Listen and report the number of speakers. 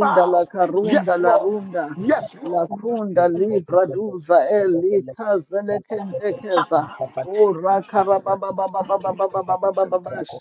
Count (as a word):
three